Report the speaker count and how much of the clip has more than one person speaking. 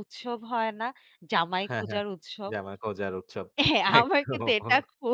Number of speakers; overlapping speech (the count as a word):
two, about 25%